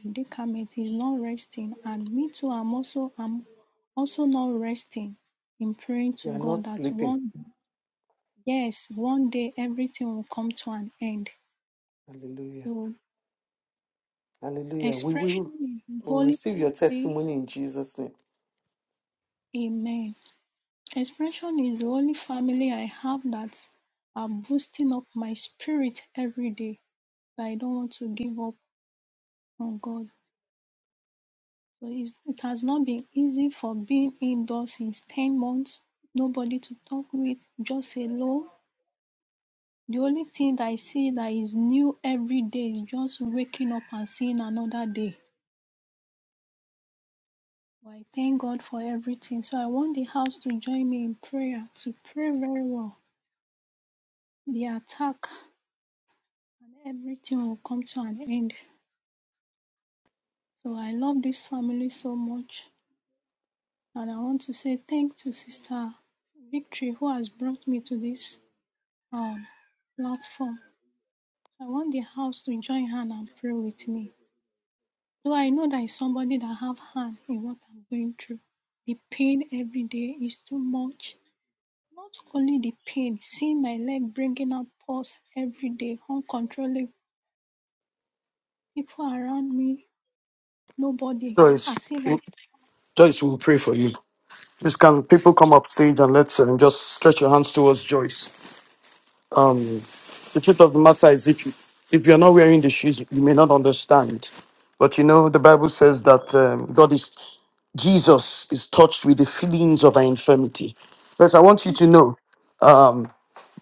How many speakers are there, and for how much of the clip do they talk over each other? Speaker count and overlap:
3, about 2%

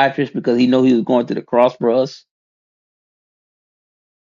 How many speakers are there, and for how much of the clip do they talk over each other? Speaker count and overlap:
1, no overlap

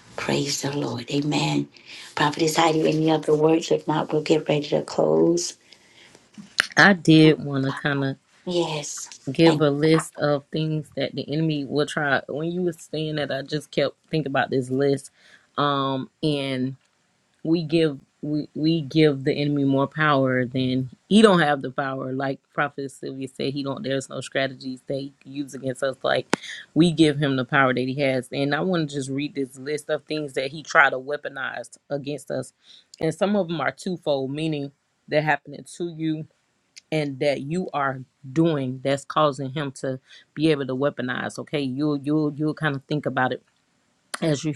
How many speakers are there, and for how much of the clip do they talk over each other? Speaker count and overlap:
2, about 1%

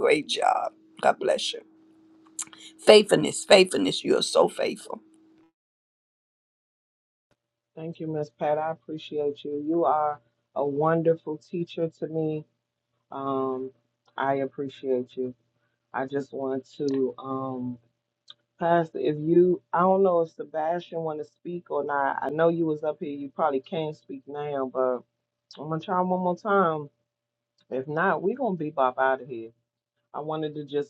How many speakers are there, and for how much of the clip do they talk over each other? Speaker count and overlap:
2, no overlap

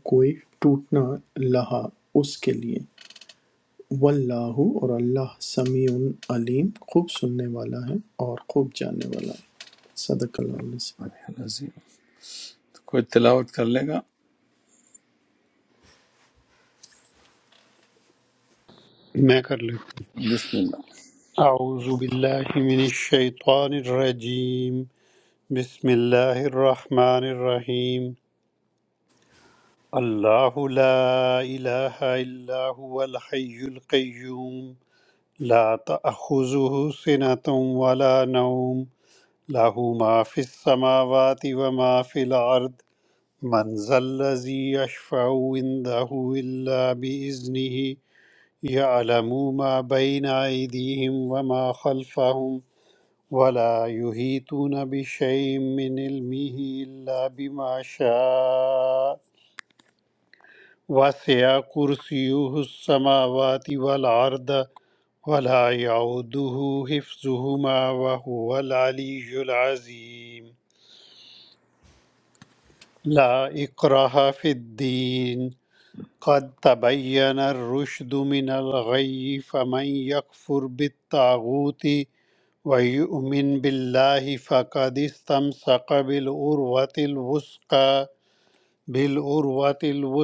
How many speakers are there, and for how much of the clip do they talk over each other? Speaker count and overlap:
3, no overlap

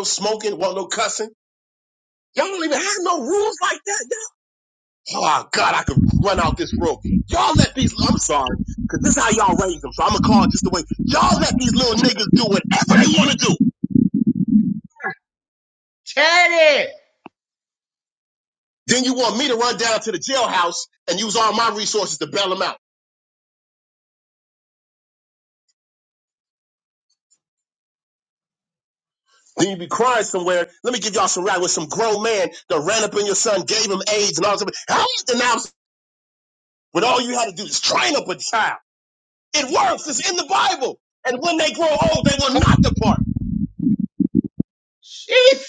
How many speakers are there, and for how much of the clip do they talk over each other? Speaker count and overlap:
2, about 1%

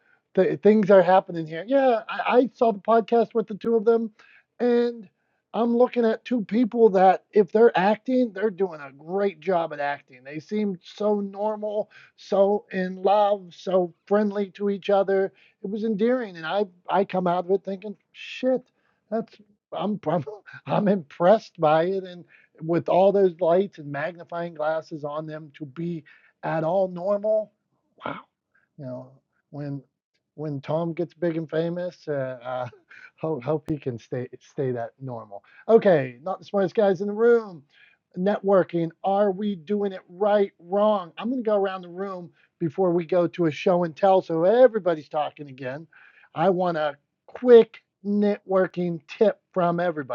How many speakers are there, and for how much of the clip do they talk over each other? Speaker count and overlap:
1, no overlap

